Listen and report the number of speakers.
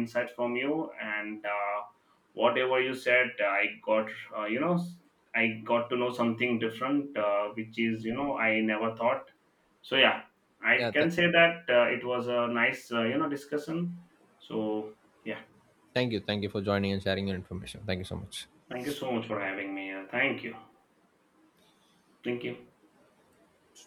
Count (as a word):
two